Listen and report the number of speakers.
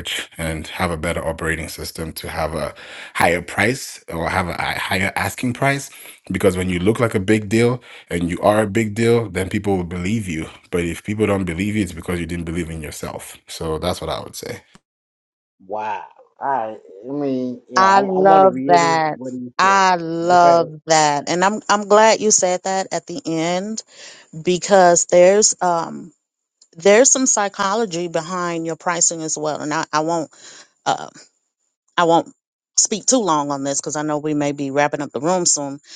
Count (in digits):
3